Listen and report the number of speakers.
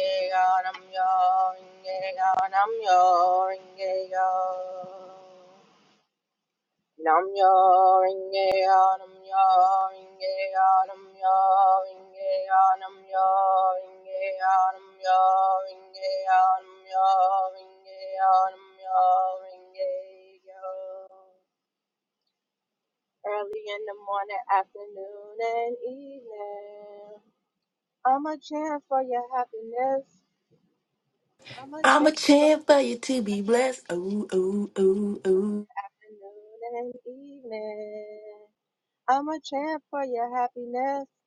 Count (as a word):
two